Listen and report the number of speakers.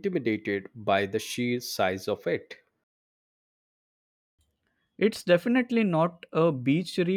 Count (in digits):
2